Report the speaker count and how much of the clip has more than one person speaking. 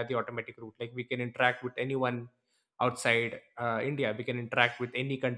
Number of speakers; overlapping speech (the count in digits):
1, no overlap